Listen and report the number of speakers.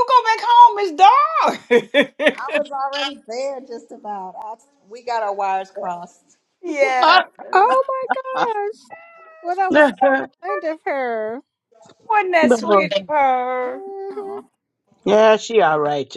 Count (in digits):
4